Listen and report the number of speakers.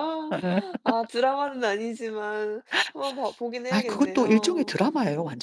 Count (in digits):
2